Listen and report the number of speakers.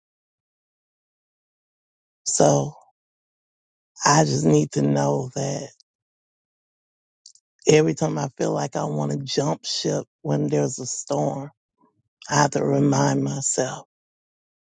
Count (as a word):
one